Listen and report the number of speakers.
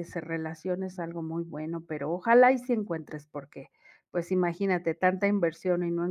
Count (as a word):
one